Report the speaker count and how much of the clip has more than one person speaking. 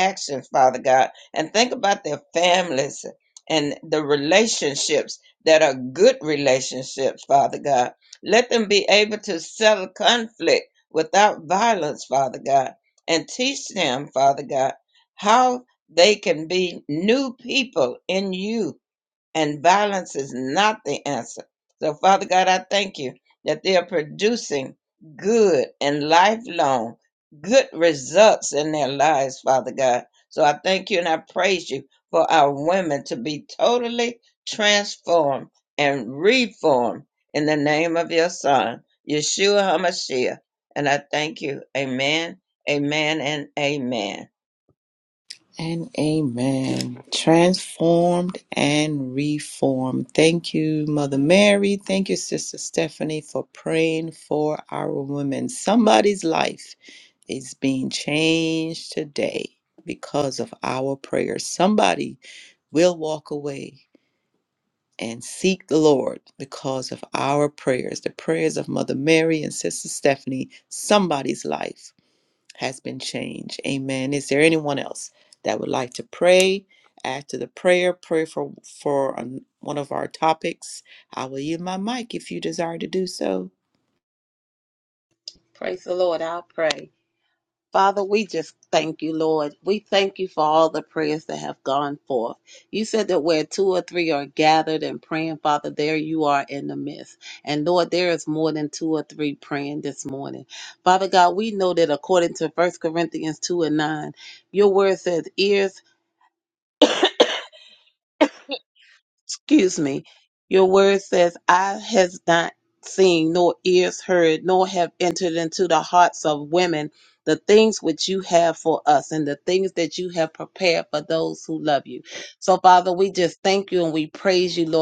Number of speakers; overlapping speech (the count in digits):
3, no overlap